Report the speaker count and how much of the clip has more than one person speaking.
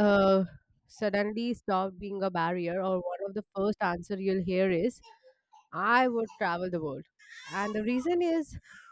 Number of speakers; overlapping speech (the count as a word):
one, no overlap